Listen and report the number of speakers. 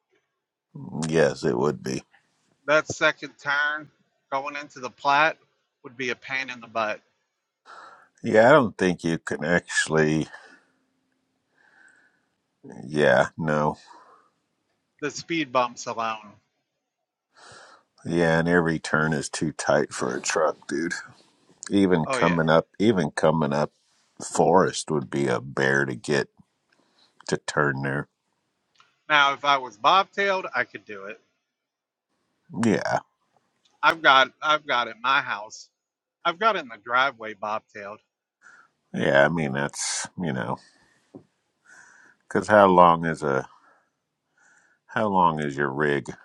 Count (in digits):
2